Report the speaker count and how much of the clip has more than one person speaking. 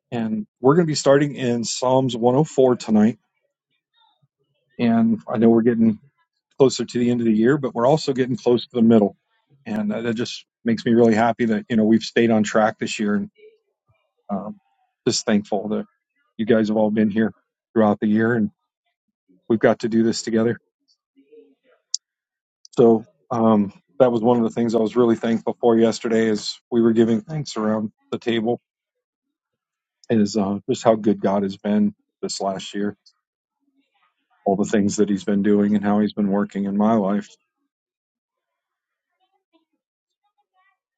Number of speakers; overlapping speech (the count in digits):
1, no overlap